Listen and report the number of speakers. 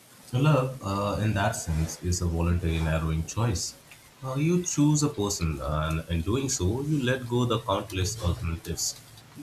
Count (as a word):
one